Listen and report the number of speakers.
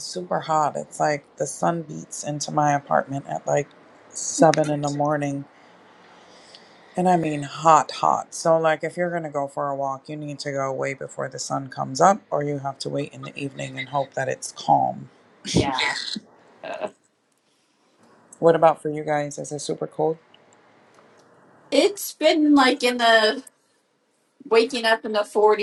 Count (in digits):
2